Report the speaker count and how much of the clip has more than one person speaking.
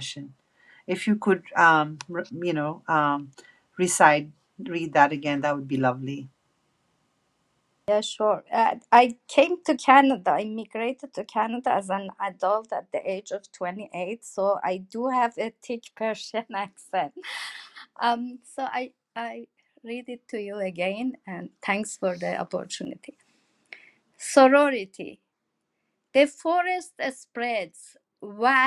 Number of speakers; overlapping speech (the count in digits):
2, no overlap